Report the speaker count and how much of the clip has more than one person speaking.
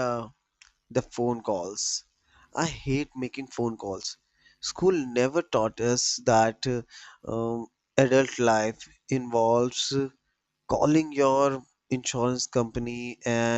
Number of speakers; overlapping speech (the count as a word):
one, no overlap